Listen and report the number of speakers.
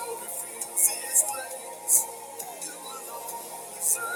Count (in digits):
0